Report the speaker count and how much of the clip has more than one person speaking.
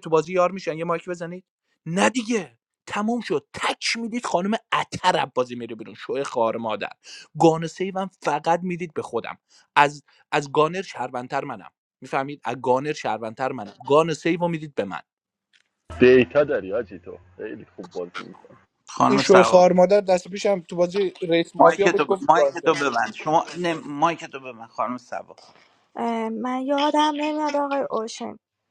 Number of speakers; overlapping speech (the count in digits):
4, about 5%